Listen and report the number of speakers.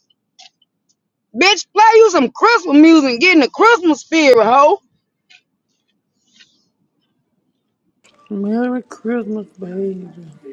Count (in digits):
2